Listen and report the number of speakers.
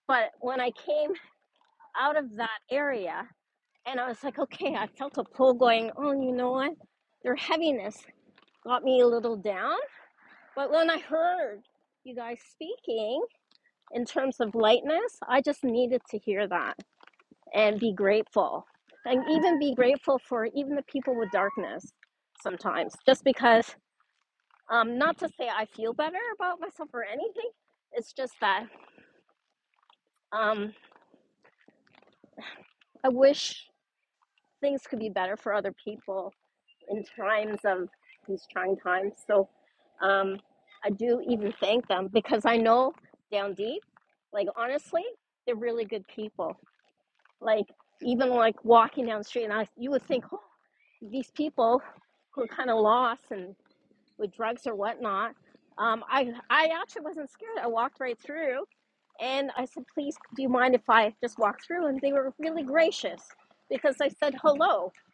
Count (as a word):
one